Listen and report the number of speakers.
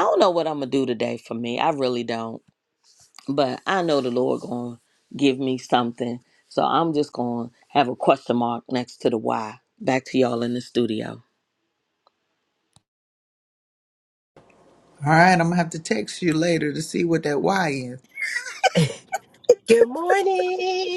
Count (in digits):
3